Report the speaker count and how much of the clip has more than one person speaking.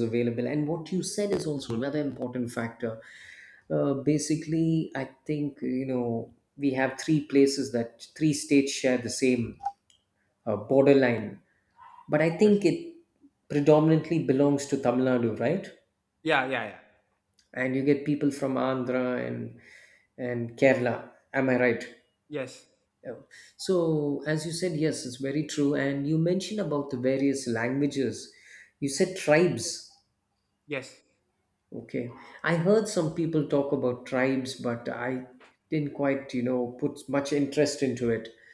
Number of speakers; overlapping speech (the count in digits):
2, under 1%